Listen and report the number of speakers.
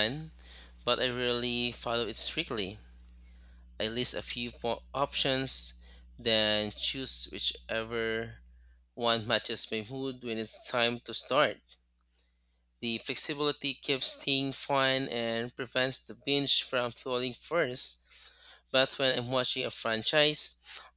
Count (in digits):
1